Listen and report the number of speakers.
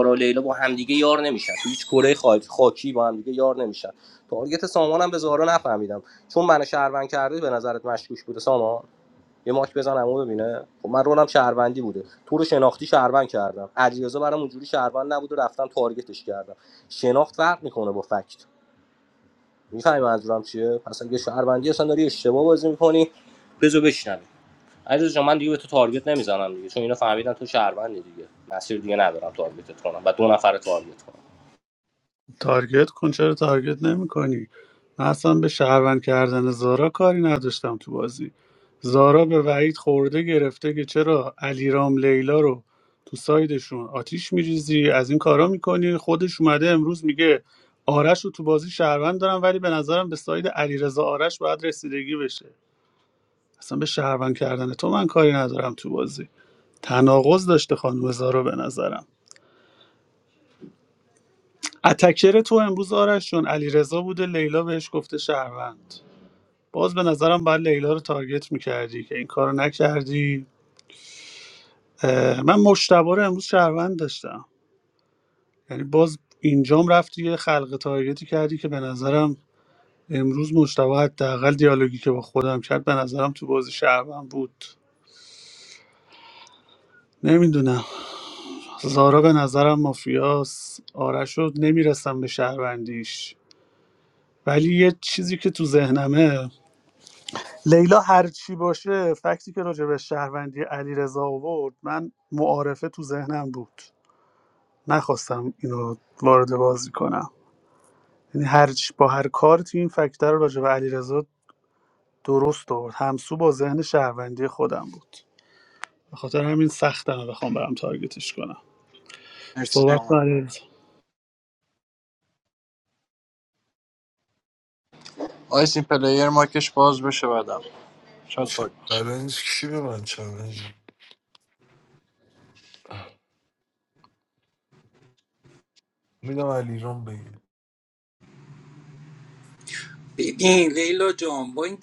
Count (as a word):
five